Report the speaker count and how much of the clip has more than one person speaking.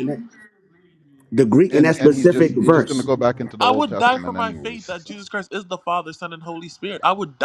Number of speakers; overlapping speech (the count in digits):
3, about 40%